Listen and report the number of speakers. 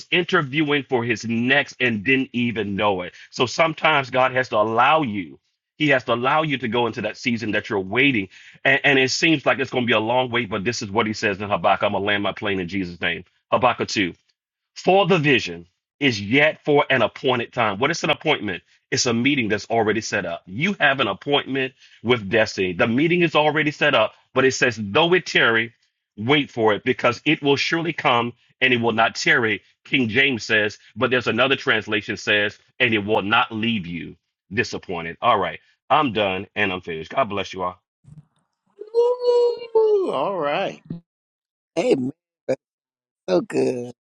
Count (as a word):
three